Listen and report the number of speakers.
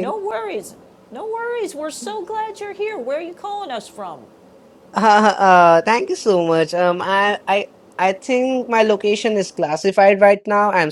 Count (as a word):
two